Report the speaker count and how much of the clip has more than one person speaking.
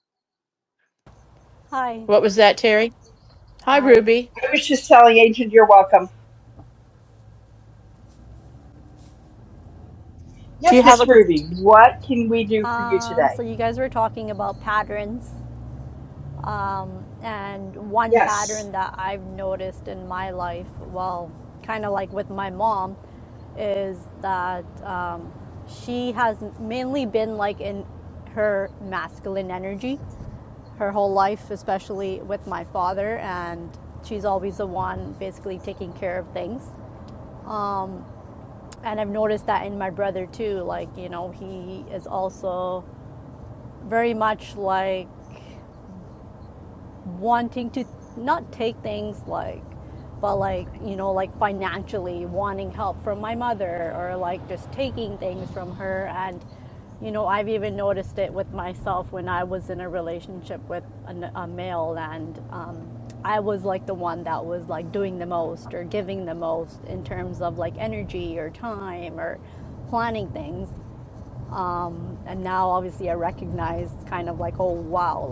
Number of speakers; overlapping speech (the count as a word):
three, about 2%